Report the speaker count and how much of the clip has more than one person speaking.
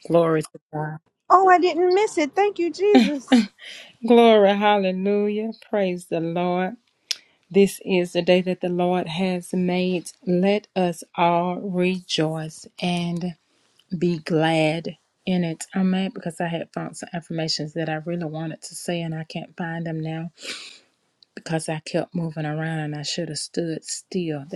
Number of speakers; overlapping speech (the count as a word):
two, no overlap